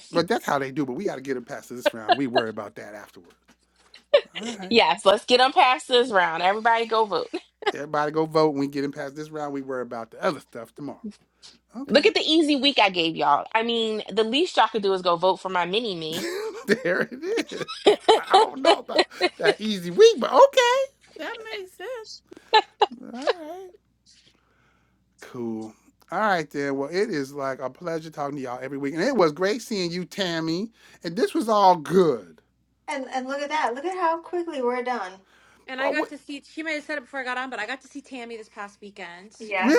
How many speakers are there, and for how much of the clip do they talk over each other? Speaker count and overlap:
4, about 2%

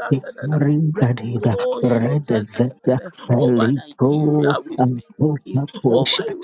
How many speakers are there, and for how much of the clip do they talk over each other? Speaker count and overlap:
2, about 54%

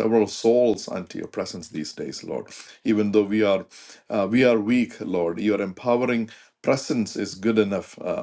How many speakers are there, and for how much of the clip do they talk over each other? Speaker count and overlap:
1, no overlap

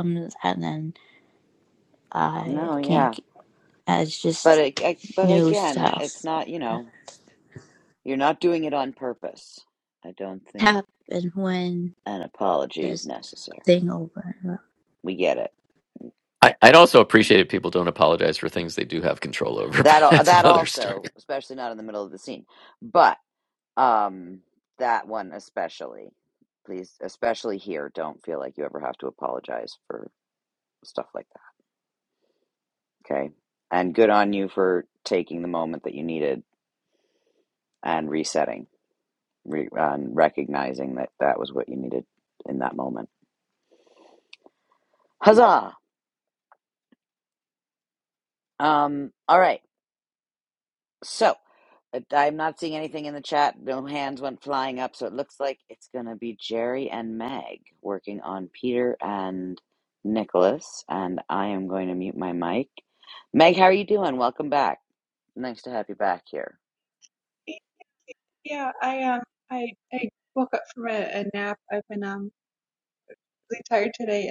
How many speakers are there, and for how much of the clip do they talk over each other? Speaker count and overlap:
4, about 4%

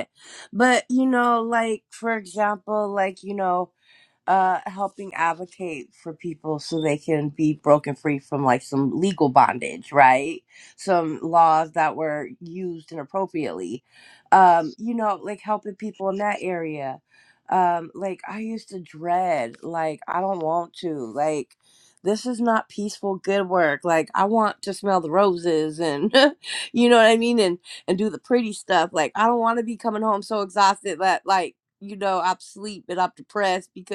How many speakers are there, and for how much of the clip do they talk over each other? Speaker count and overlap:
1, no overlap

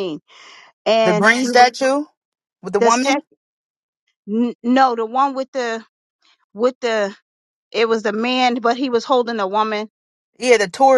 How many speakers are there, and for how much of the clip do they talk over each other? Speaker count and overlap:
2, about 10%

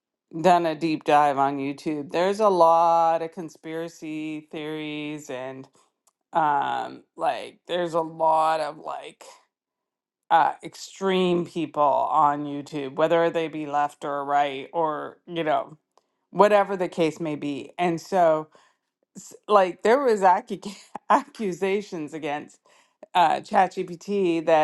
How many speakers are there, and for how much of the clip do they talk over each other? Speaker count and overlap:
1, no overlap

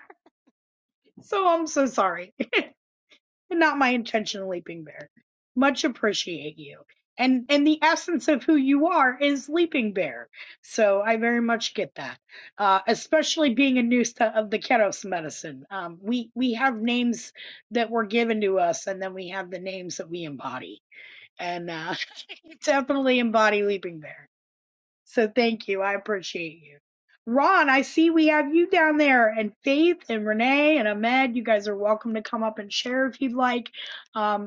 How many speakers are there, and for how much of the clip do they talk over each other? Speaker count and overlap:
1, no overlap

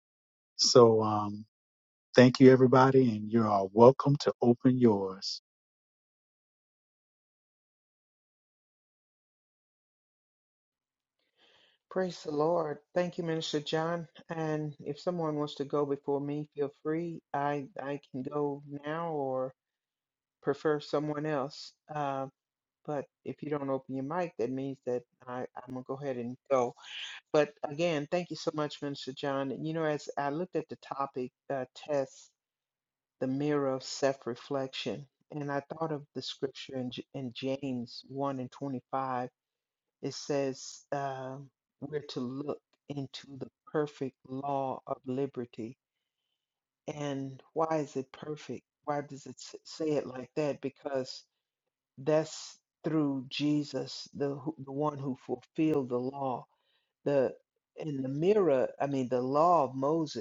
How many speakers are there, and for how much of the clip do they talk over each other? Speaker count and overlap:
2, no overlap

